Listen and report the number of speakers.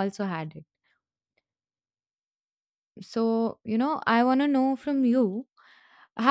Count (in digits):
1